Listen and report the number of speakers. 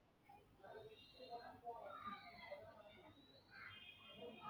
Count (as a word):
zero